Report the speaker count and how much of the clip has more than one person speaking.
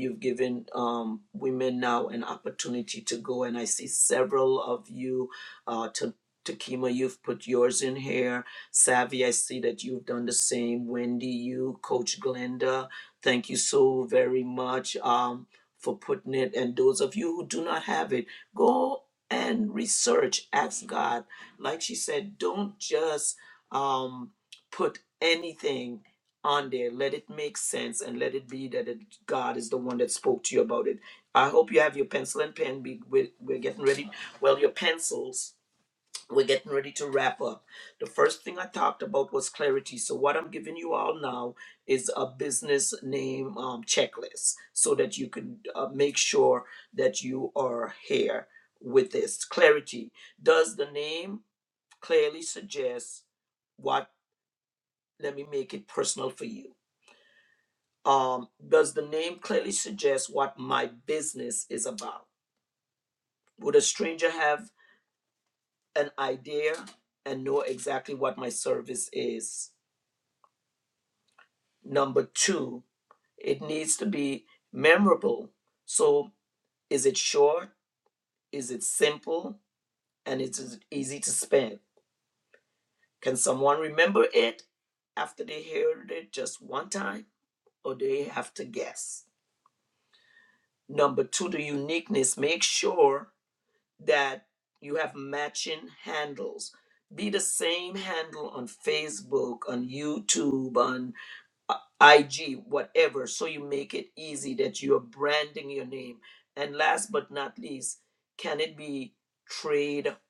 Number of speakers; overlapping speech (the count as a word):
one, no overlap